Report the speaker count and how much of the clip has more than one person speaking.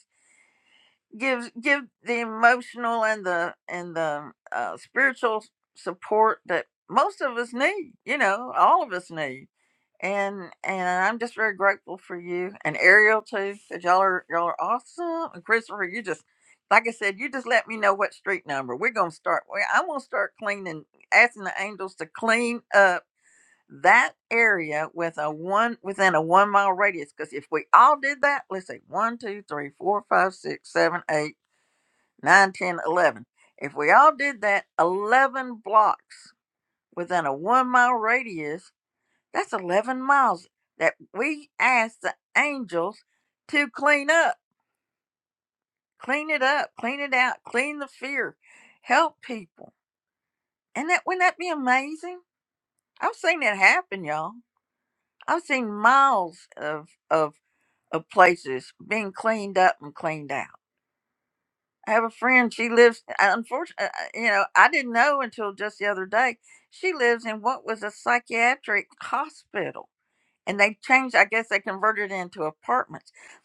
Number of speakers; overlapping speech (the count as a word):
one, no overlap